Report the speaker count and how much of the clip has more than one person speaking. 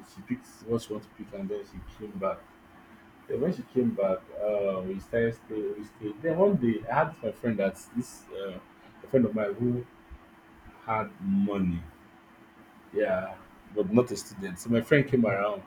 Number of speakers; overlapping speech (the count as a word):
one, no overlap